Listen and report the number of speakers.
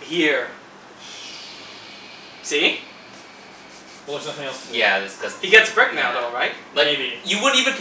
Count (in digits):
3